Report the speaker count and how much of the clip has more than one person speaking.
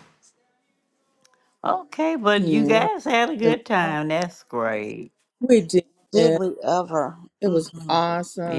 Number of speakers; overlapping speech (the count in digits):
3, about 12%